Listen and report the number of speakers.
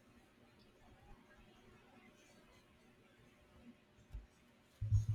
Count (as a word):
zero